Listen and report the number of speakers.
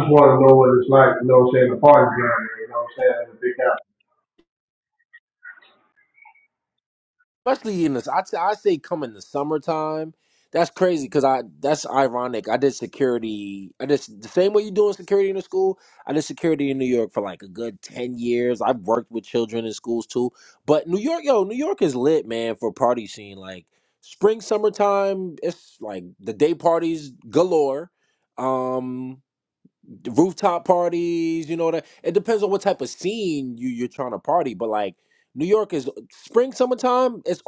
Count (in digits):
2